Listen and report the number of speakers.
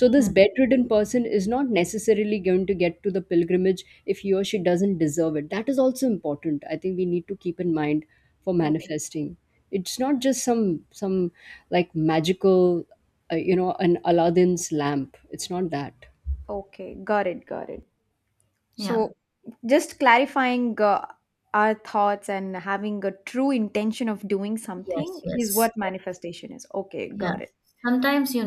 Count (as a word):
three